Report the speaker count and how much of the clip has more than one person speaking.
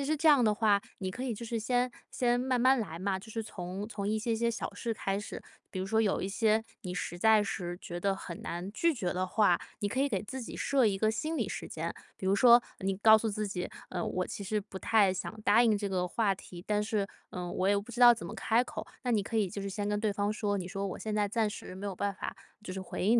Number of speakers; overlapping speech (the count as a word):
one, no overlap